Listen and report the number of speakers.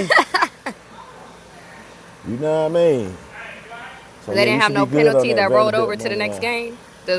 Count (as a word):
two